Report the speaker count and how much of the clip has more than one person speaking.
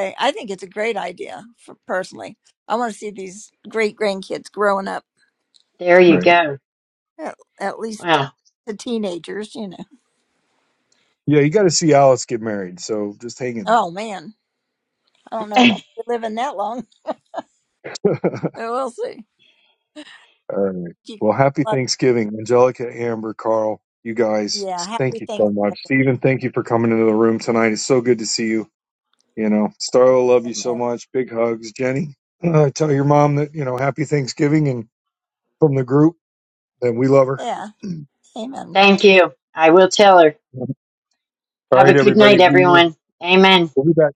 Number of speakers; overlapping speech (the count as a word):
three, about 6%